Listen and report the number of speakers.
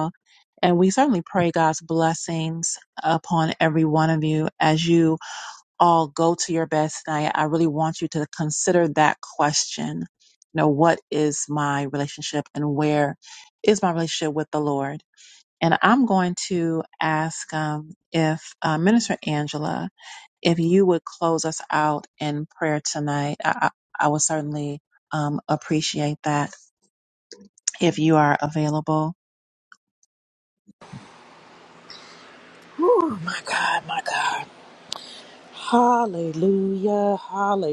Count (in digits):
2